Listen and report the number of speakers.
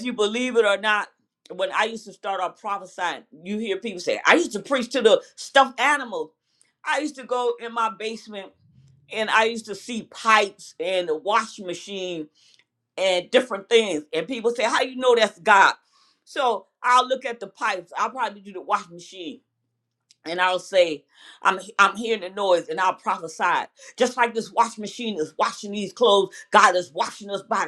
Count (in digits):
1